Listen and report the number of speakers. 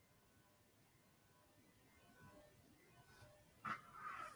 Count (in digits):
0